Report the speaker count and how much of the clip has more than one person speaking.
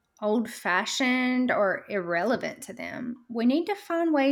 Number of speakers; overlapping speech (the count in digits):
1, no overlap